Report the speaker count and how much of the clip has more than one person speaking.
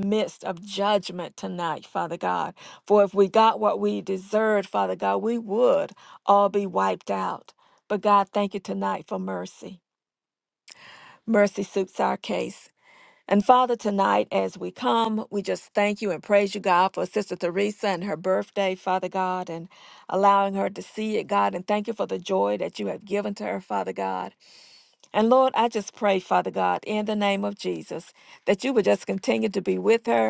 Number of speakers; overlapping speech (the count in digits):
1, no overlap